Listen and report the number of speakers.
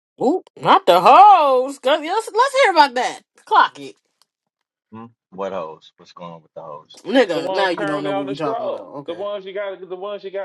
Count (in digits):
3